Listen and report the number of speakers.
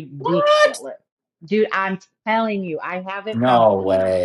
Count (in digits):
2